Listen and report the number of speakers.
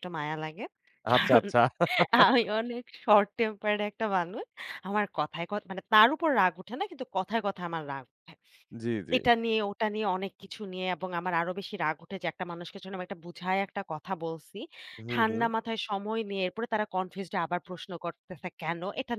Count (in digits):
2